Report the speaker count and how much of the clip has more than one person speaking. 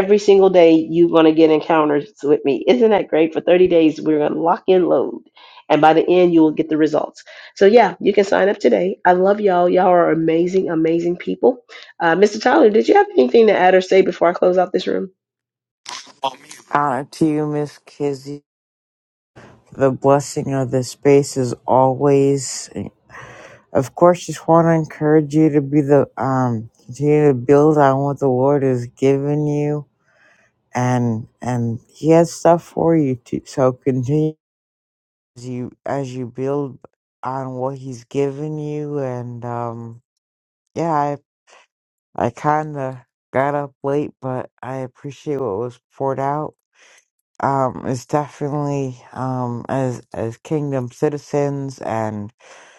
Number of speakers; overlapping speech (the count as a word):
two, no overlap